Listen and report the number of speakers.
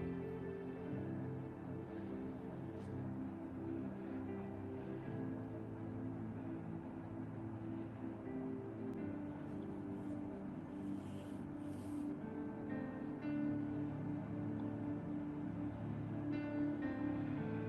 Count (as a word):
zero